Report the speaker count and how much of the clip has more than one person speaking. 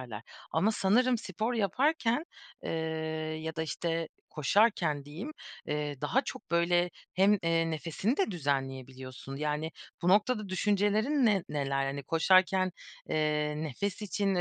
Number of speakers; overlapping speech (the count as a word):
one, no overlap